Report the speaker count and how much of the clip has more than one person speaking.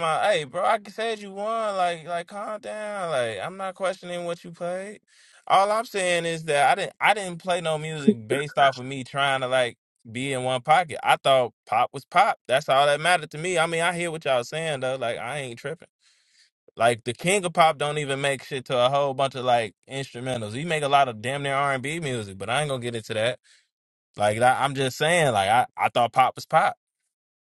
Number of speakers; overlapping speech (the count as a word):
one, no overlap